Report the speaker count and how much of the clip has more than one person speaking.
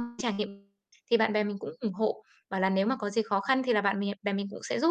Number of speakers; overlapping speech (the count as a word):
one, no overlap